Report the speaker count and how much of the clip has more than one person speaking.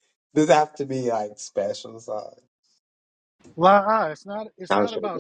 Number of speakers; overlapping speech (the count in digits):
2, about 10%